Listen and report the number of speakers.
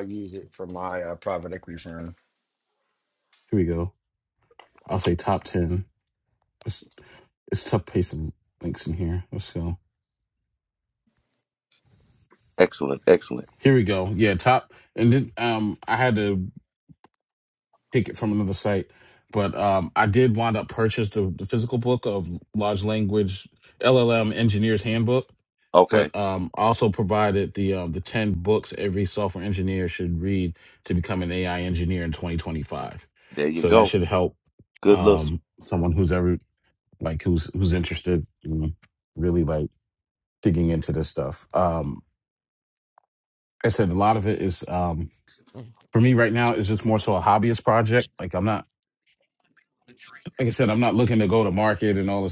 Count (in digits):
3